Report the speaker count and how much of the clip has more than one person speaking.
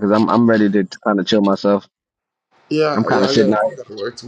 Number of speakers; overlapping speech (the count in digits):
2, about 16%